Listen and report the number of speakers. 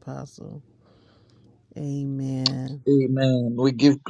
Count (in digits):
2